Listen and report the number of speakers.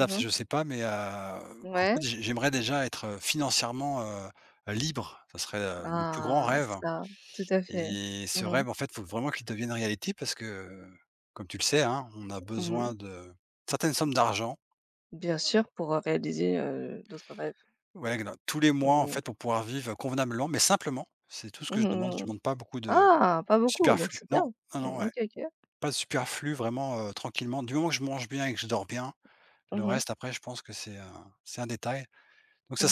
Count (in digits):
2